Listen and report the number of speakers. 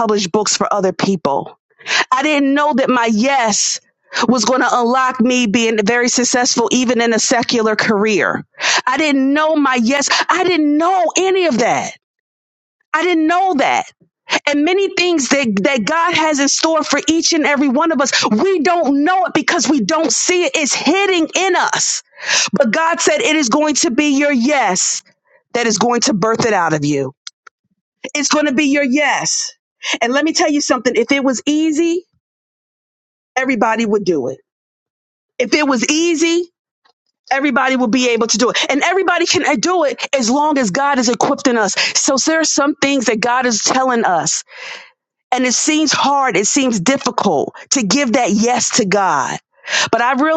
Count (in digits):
1